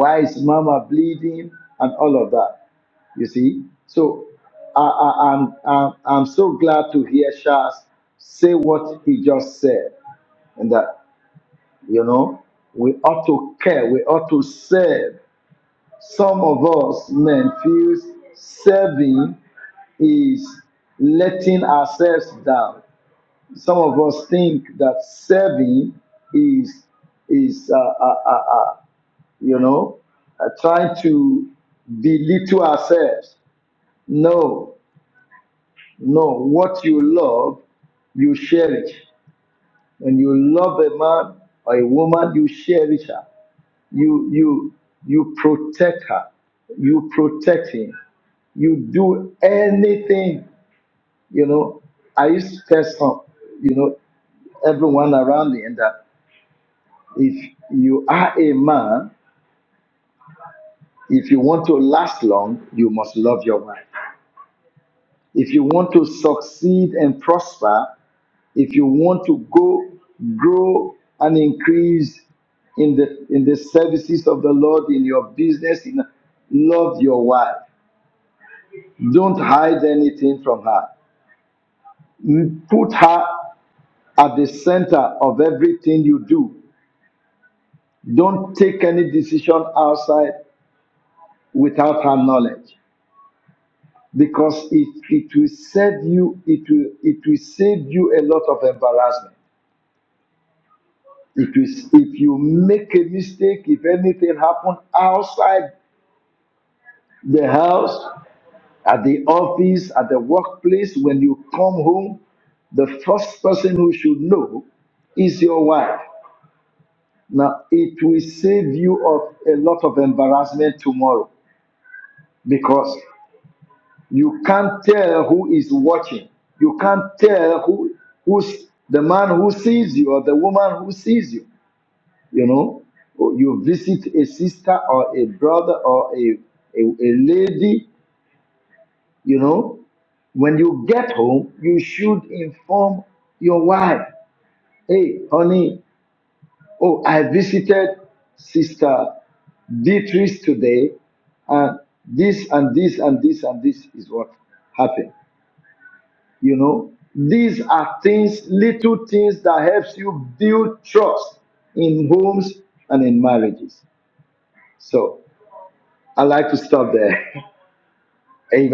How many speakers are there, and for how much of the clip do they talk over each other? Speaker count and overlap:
1, no overlap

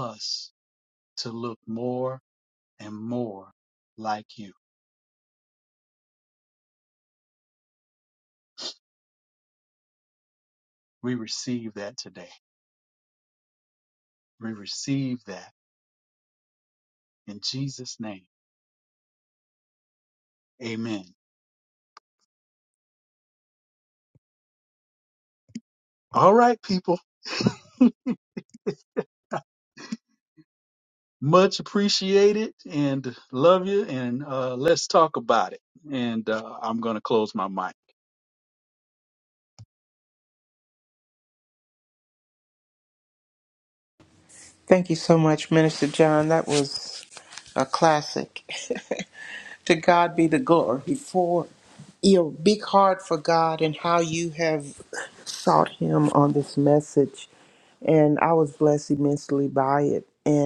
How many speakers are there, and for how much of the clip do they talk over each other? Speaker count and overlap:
2, no overlap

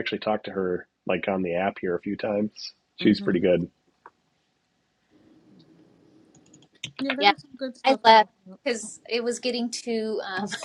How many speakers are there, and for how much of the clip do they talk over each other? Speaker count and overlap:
3, about 8%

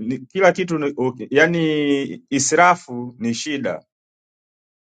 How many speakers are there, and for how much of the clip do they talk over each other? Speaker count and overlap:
1, no overlap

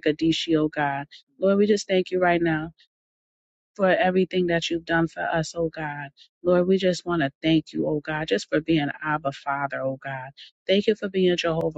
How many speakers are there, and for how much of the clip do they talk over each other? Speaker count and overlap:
1, no overlap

